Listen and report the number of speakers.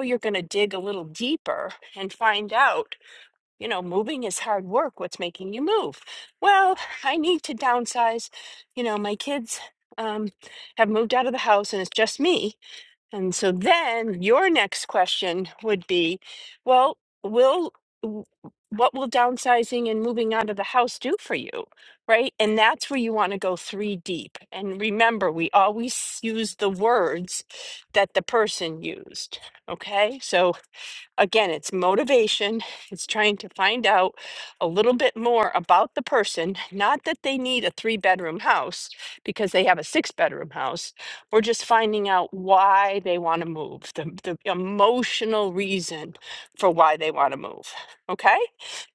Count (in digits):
1